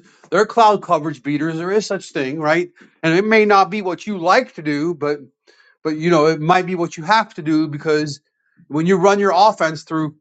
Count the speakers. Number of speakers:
1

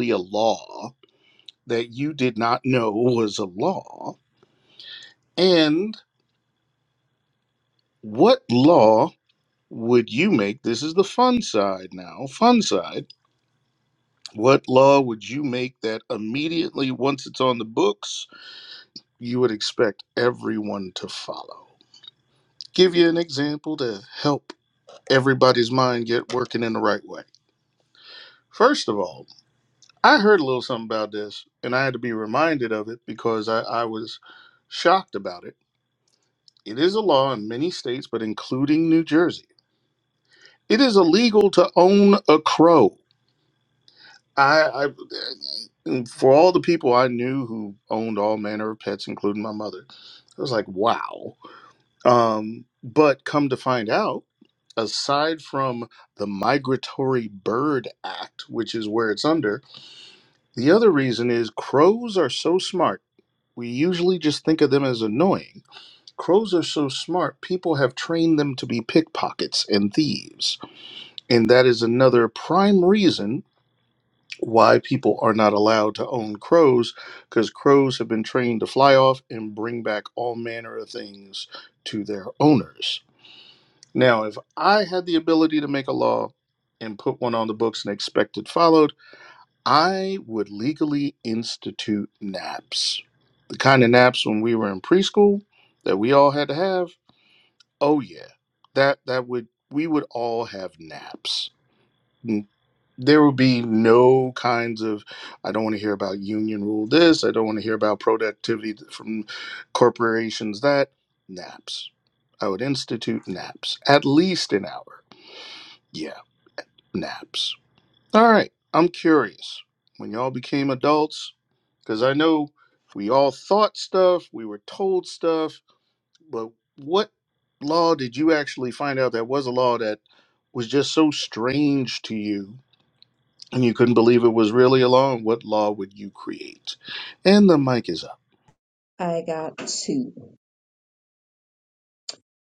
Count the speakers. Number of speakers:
2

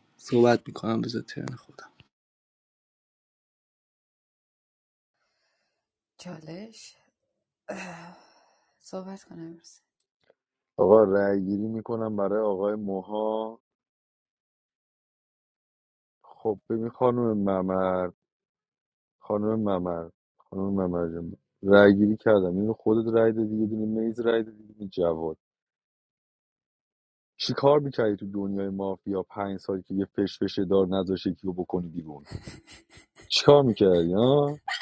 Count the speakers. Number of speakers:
3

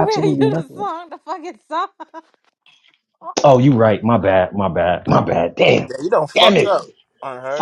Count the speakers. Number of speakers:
3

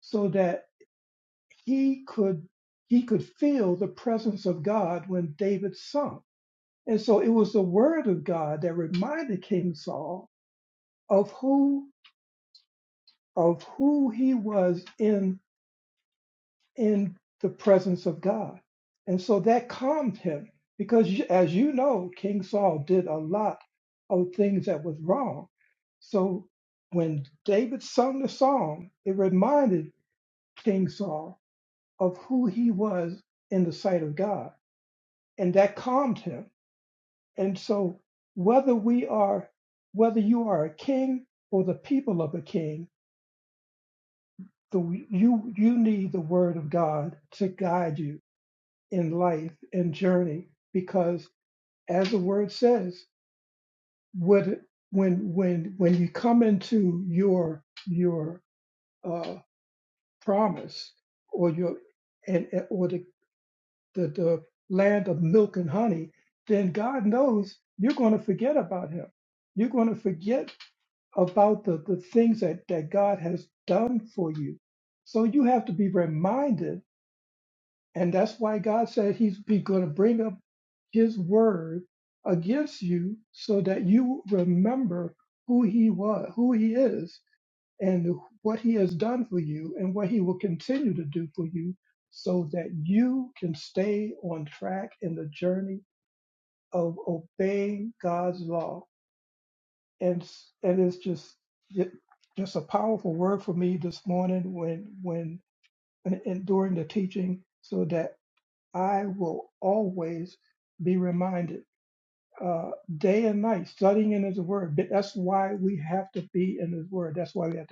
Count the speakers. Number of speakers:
1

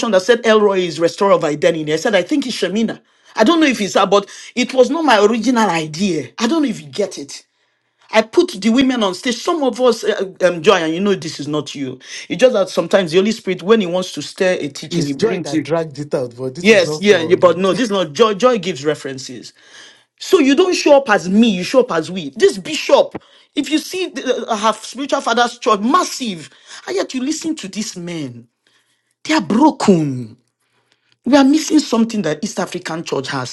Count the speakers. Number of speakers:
2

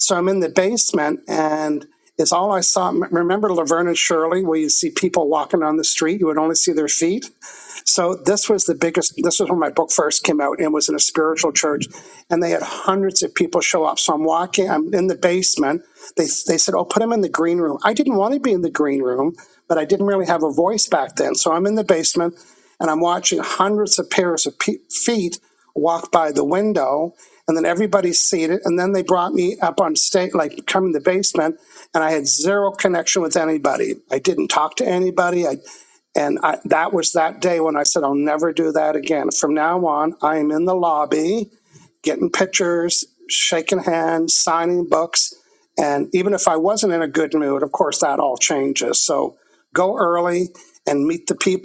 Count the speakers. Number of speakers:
1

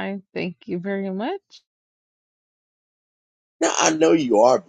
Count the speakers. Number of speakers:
2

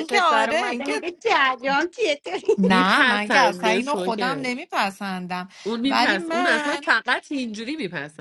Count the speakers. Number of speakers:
3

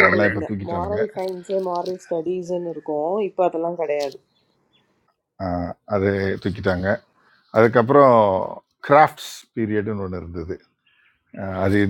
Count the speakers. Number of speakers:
2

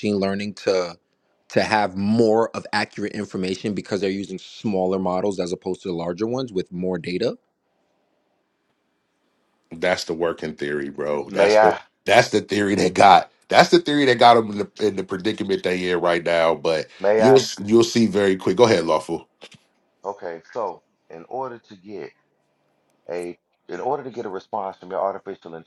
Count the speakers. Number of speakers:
3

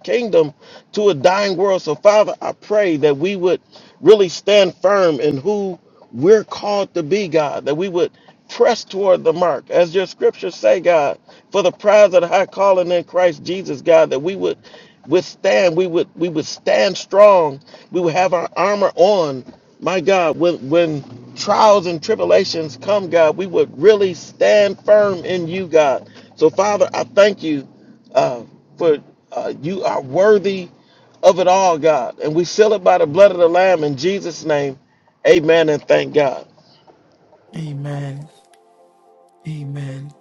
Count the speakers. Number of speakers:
2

